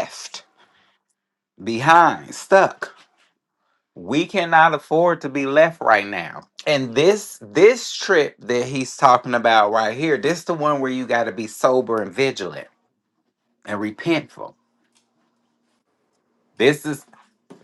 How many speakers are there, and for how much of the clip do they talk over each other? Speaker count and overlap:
1, no overlap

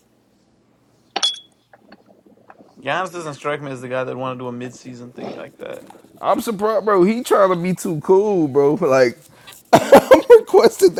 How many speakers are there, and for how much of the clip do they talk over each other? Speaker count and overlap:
2, no overlap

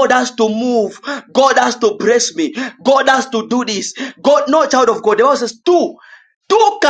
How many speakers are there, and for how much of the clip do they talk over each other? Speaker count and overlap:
1, no overlap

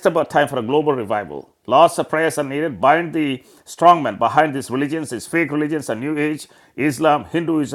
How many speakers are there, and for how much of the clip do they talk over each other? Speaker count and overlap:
1, no overlap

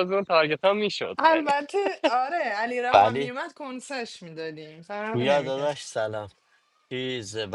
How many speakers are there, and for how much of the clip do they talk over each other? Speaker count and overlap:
3, about 12%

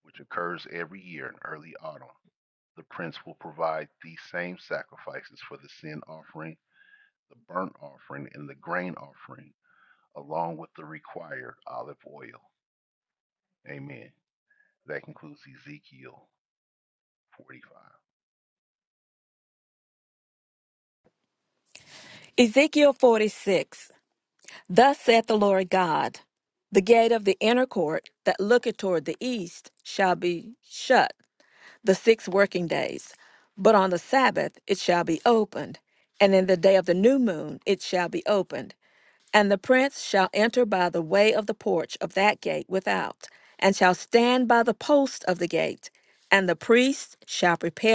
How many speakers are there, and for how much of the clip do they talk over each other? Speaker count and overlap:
2, no overlap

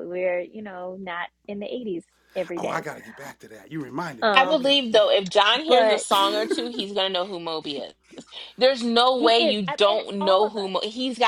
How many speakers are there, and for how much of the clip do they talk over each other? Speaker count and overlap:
3, about 26%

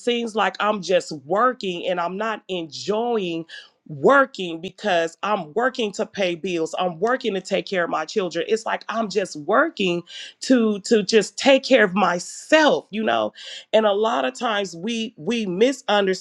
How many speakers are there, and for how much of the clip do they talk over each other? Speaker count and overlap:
1, no overlap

